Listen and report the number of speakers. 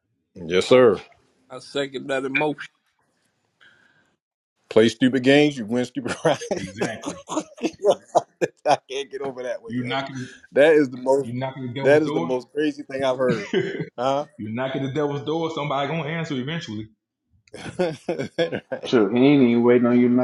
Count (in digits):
4